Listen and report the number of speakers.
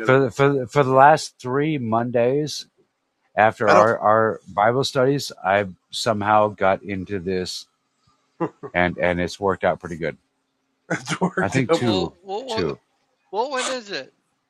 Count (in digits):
3